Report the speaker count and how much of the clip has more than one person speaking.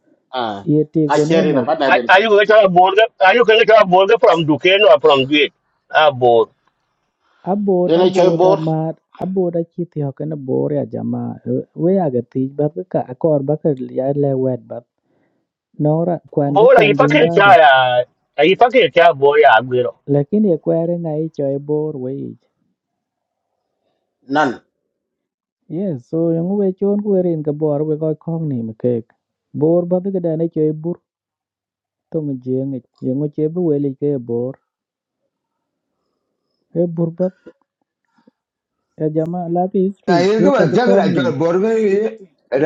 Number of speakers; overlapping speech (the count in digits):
4, about 9%